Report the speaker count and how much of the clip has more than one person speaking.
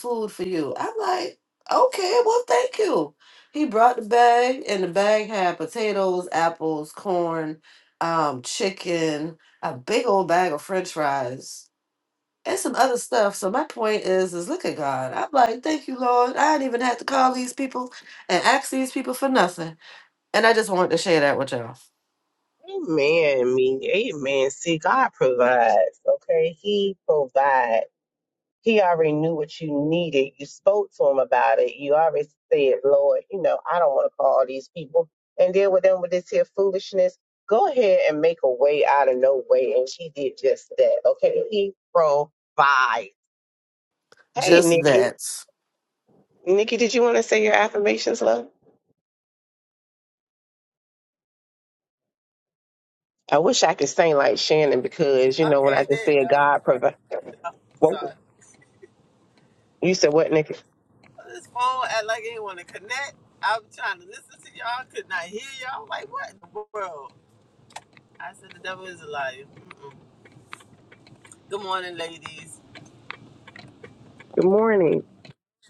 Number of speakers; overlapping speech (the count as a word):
three, about 2%